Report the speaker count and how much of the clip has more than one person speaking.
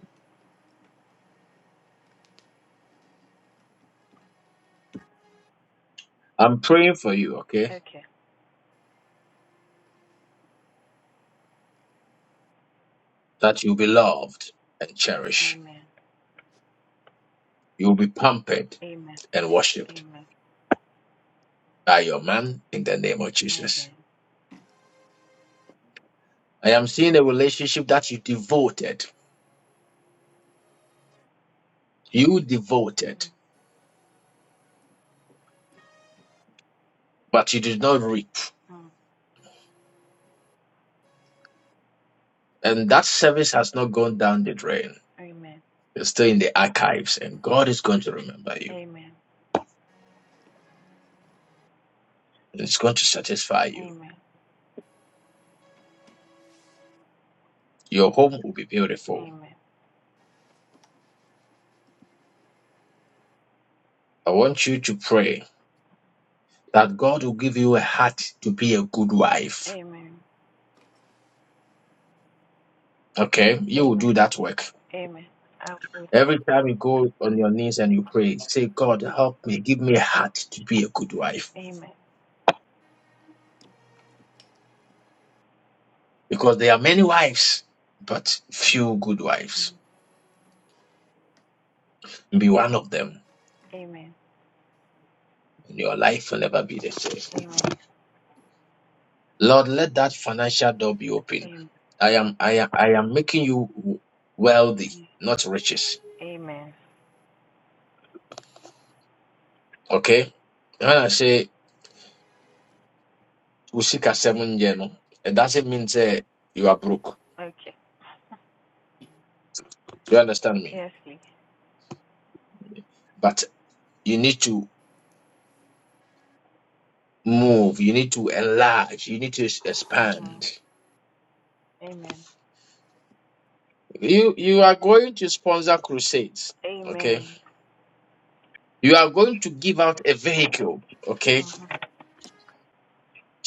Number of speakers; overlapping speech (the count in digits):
2, about 2%